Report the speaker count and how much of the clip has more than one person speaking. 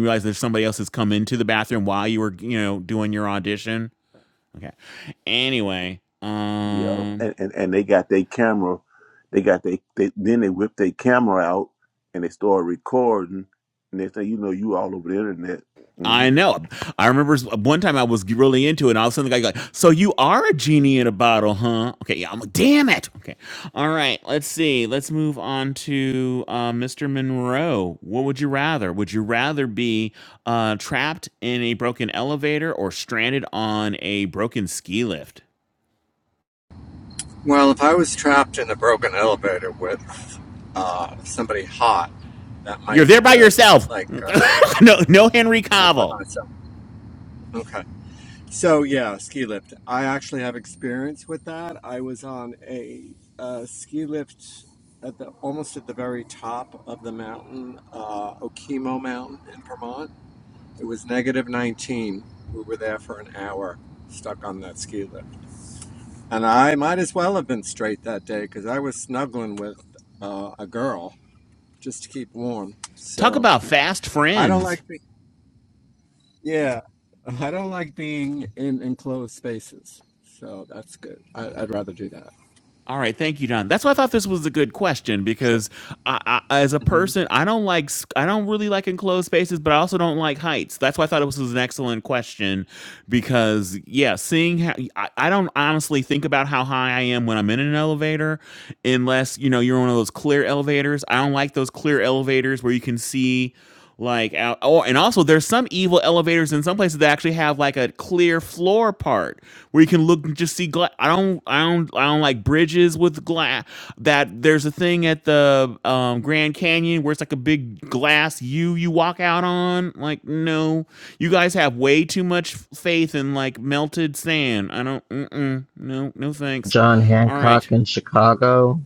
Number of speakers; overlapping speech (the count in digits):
4, about 3%